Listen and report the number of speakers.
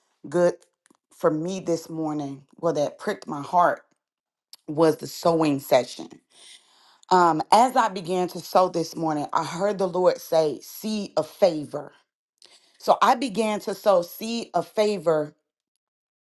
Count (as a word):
one